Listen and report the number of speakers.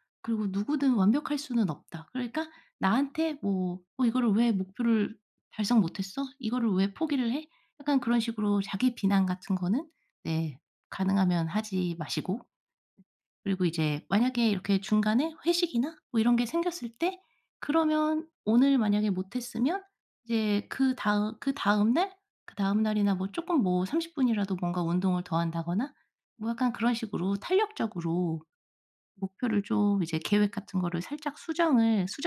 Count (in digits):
1